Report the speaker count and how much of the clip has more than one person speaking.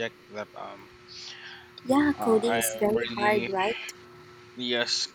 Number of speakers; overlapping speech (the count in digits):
2, about 27%